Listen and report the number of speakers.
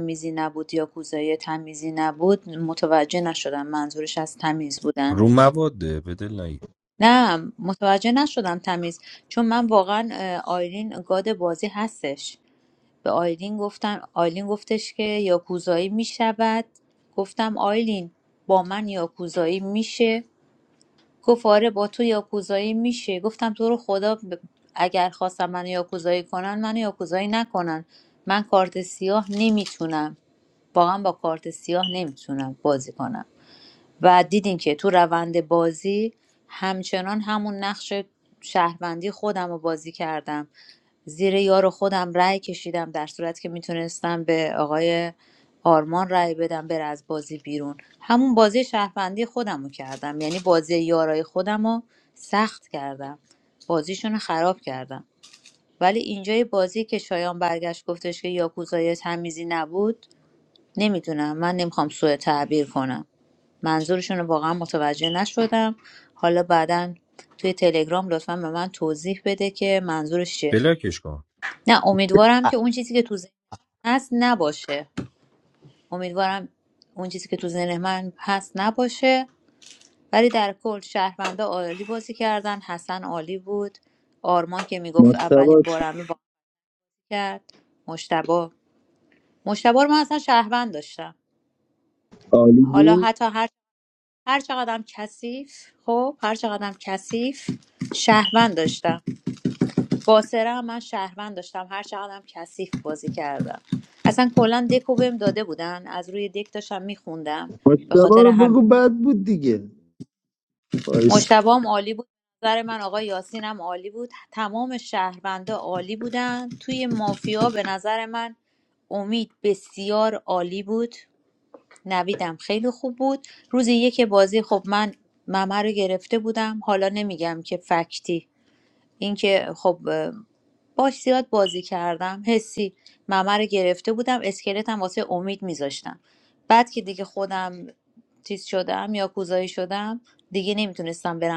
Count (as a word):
three